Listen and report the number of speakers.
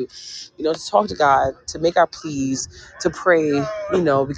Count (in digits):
1